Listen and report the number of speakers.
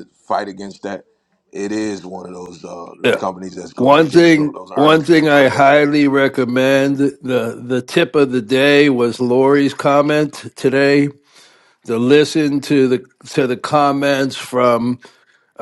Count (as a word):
two